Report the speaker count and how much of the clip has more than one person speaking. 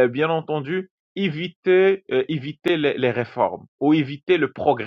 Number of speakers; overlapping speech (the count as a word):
one, no overlap